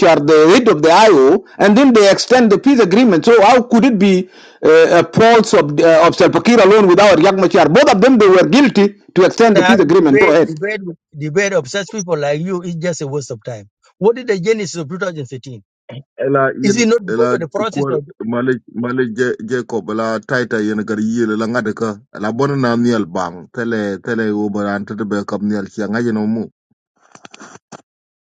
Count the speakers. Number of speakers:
3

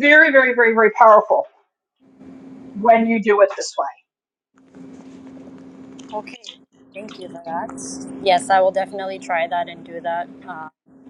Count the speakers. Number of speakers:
2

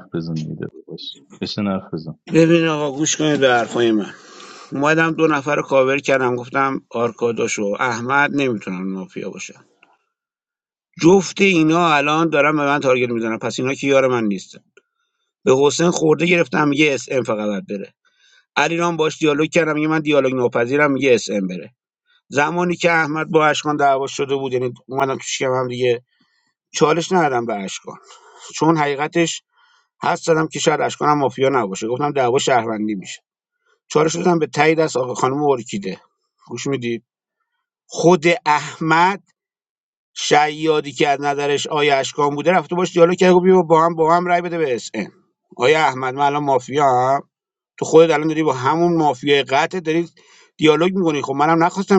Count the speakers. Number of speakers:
2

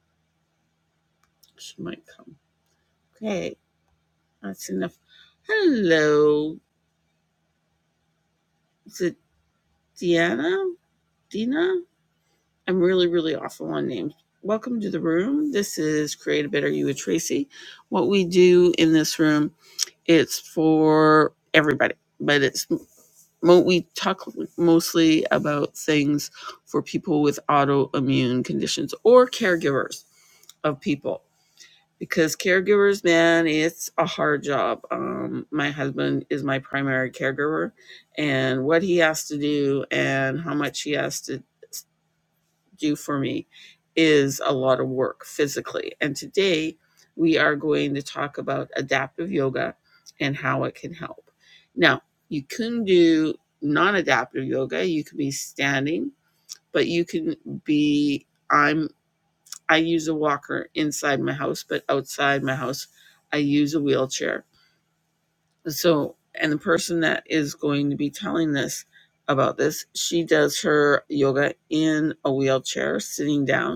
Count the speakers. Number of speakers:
1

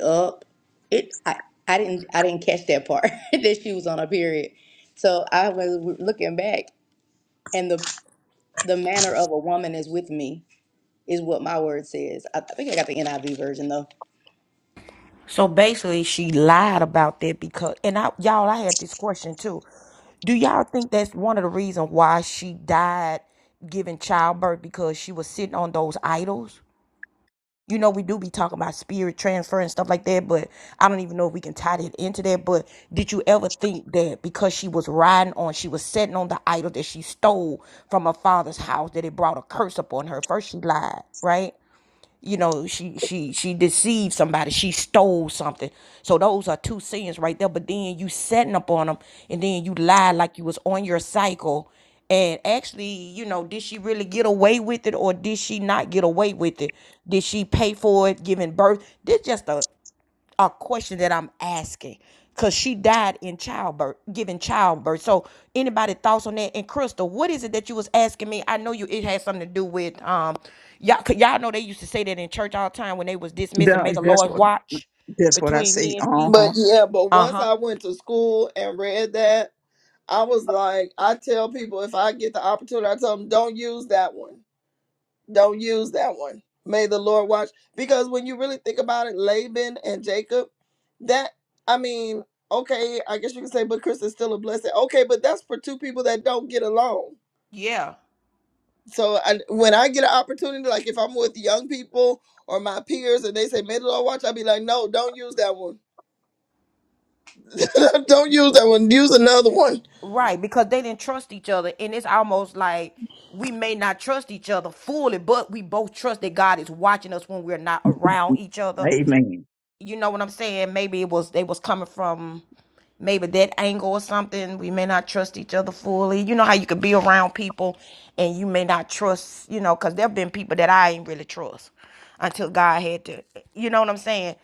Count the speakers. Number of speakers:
4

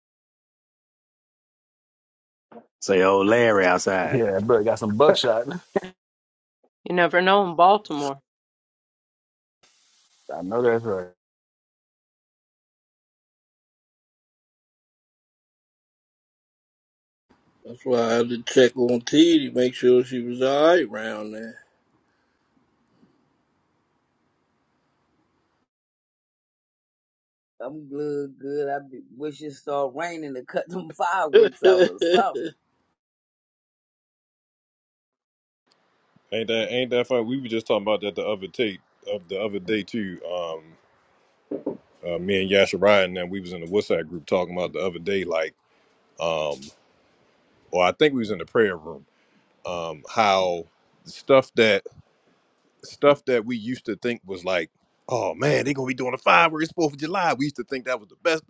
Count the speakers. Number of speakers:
6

